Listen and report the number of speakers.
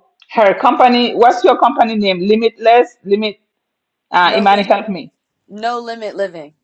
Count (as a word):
two